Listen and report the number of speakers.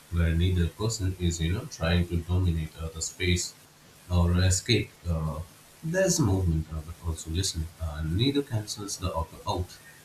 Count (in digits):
1